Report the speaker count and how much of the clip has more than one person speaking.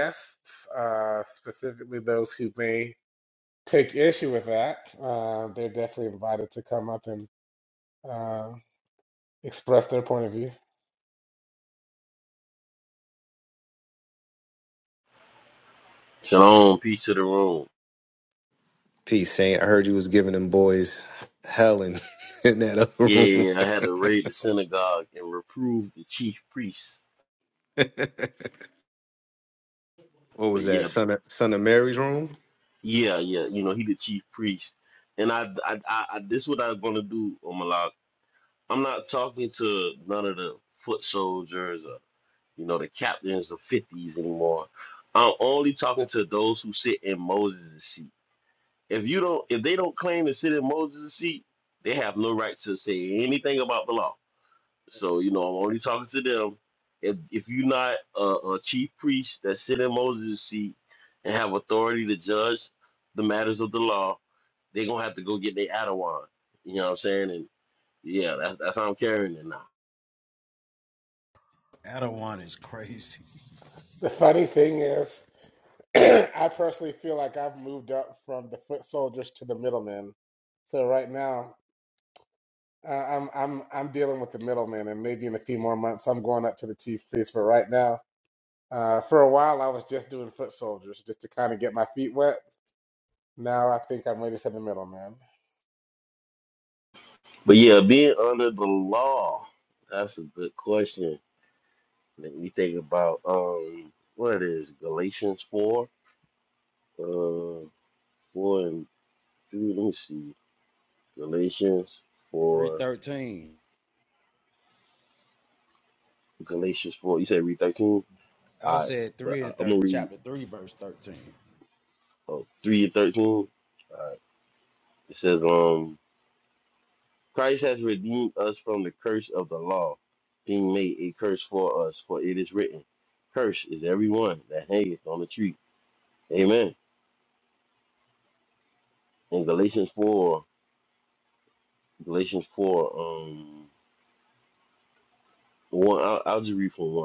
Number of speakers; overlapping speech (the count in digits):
4, about 2%